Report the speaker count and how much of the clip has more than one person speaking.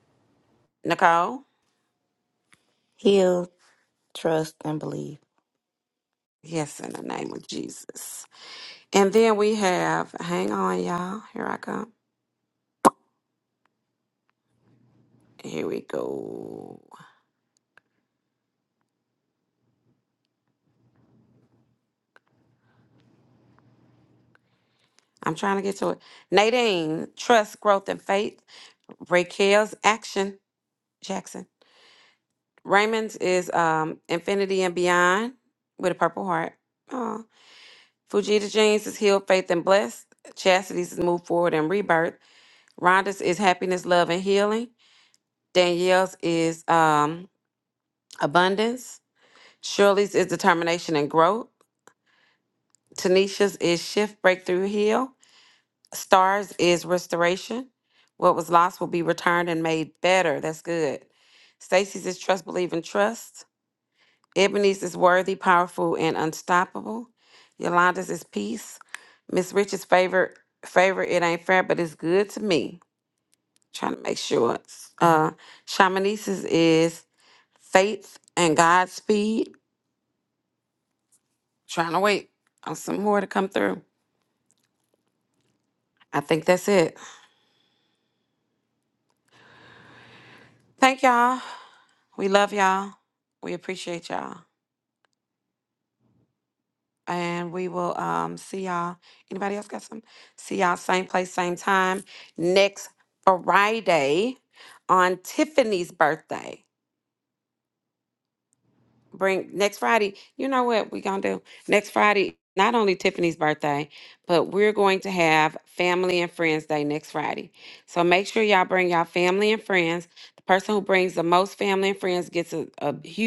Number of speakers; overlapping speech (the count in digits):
2, no overlap